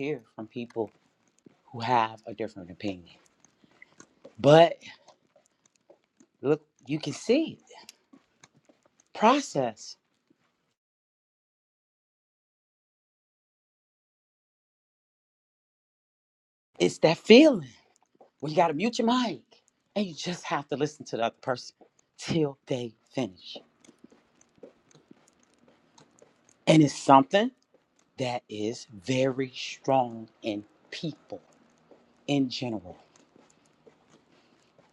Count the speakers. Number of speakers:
one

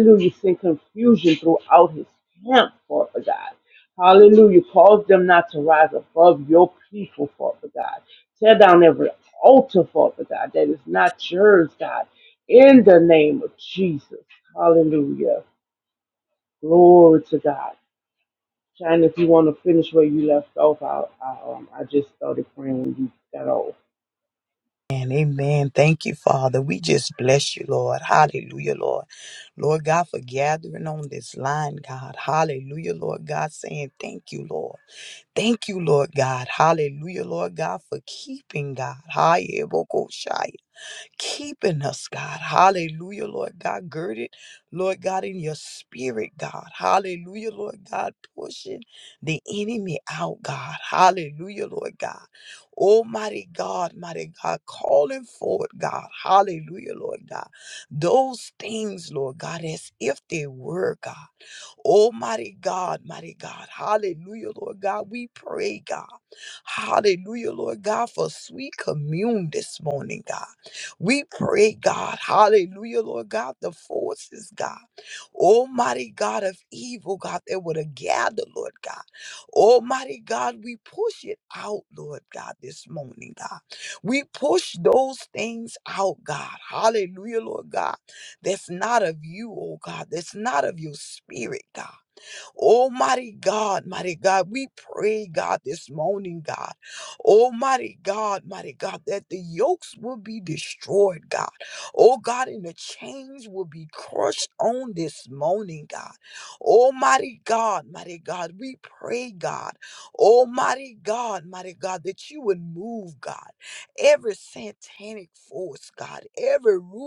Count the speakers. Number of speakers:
two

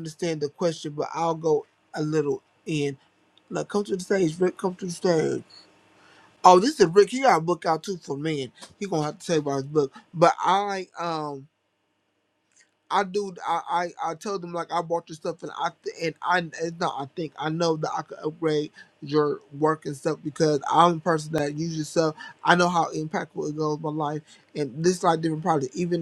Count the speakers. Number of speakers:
one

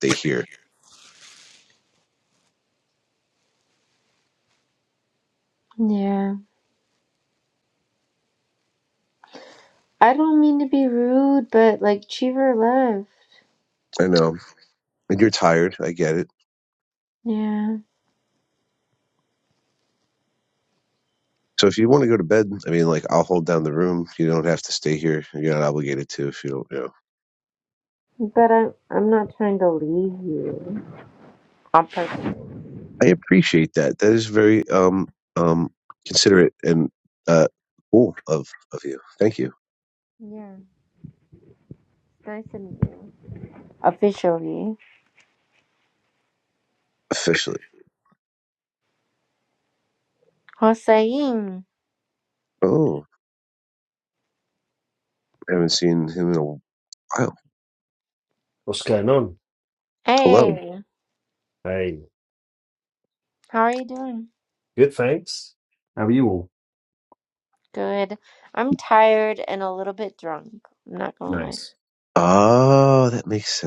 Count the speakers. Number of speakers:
three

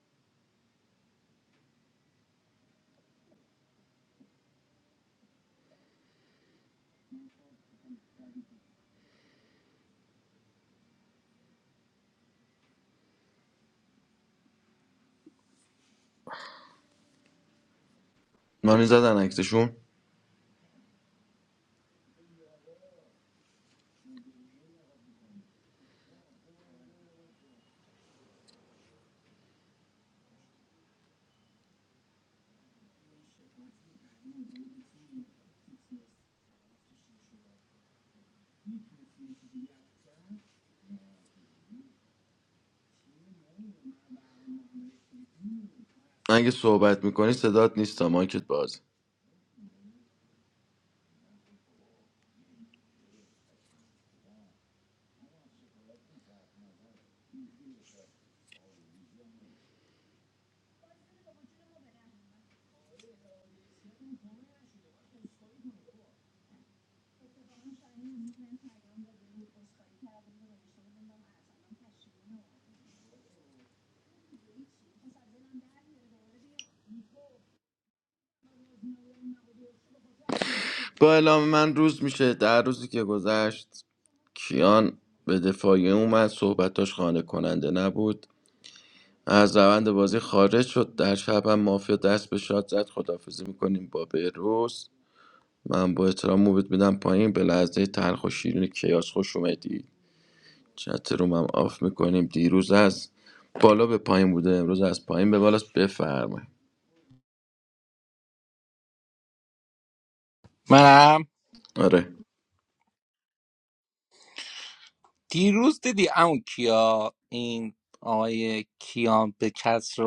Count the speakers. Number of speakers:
two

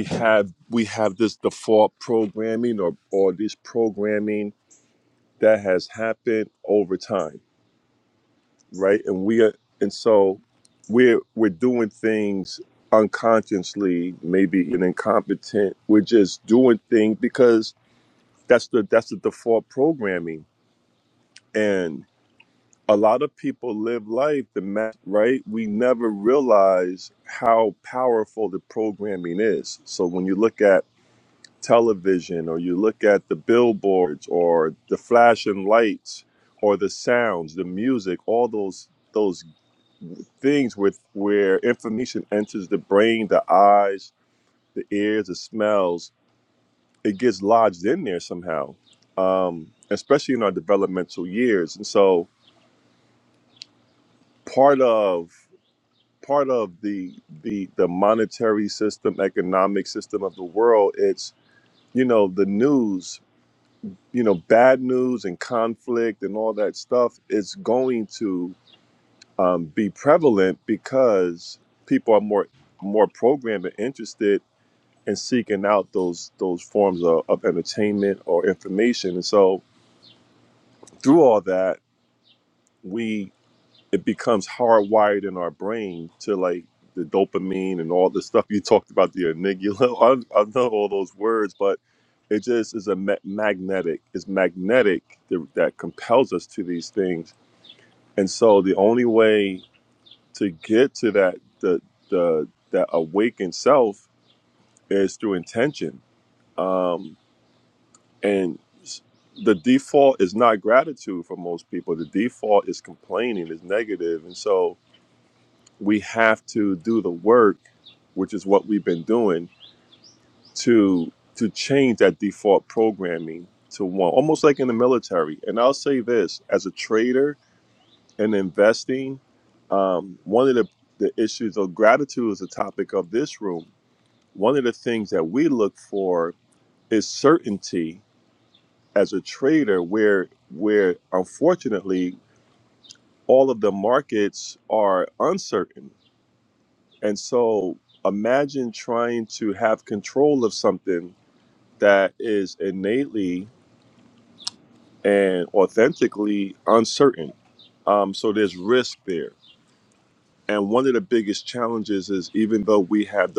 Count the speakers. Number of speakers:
one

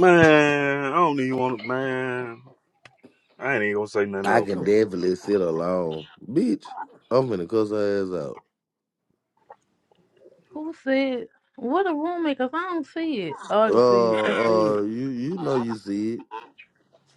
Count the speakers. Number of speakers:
three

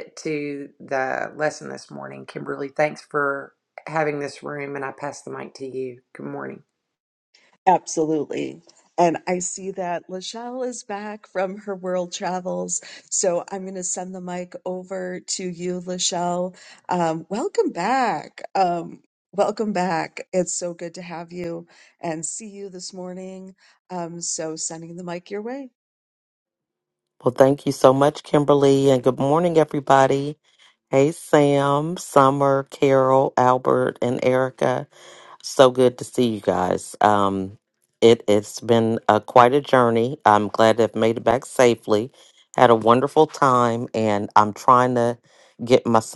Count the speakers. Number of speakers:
three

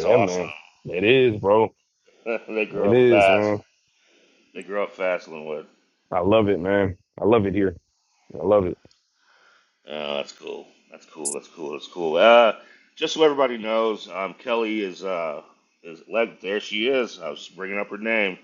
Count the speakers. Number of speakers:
two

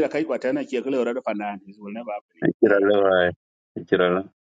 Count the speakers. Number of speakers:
two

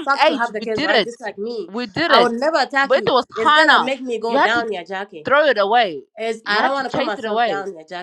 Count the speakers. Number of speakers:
two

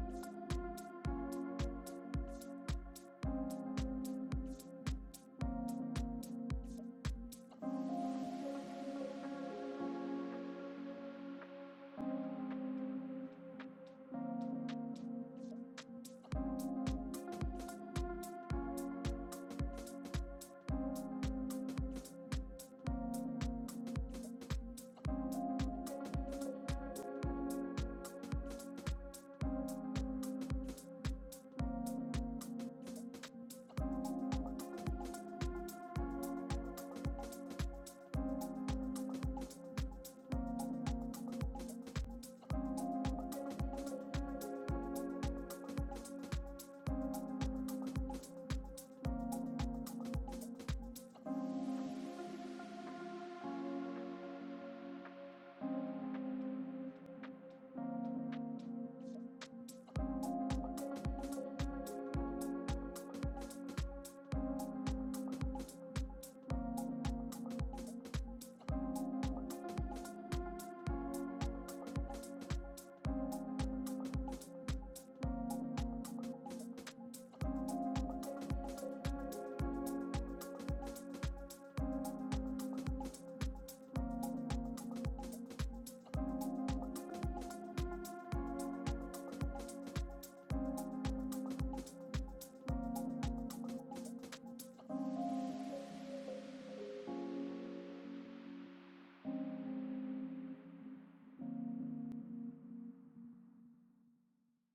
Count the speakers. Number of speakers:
zero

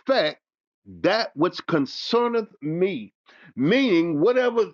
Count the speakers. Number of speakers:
one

